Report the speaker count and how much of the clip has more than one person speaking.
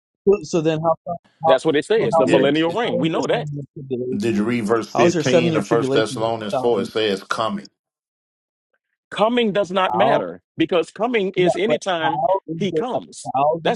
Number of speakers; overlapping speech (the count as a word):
three, about 40%